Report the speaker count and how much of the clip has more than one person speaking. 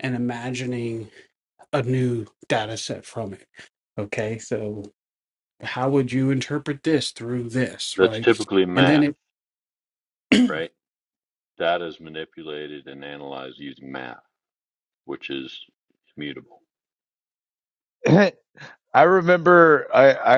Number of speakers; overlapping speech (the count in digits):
3, about 5%